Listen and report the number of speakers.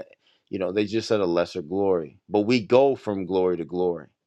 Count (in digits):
1